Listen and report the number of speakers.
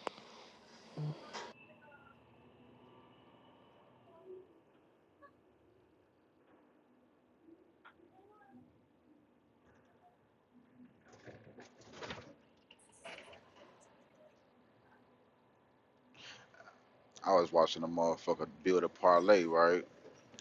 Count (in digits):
1